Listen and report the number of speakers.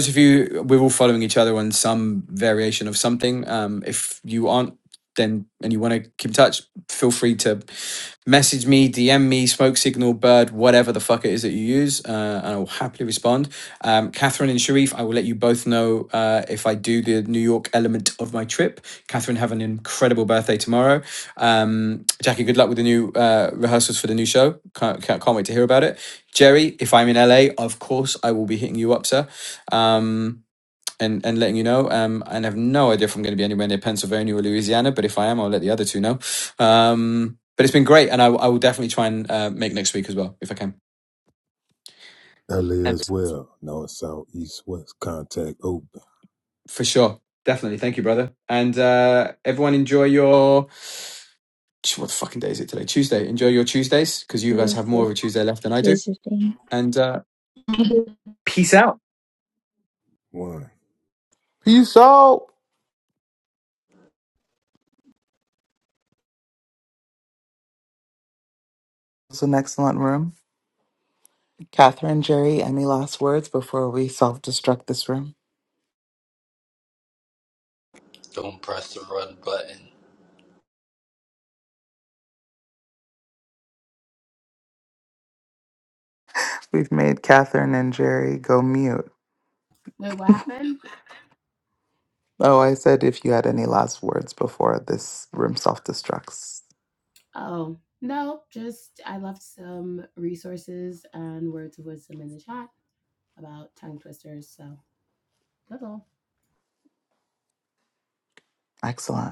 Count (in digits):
6